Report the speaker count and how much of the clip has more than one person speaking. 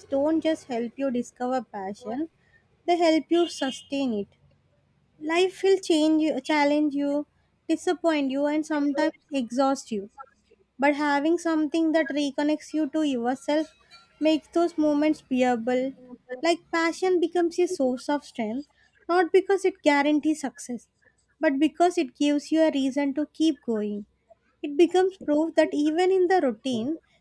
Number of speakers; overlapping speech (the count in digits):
1, no overlap